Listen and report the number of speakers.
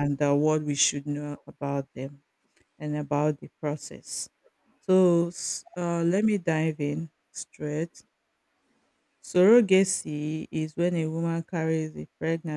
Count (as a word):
one